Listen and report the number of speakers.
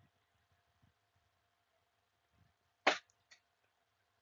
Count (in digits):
0